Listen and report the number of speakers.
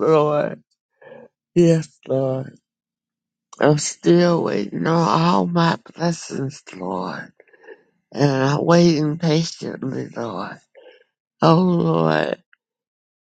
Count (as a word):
one